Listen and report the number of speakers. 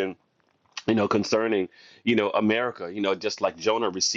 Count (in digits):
1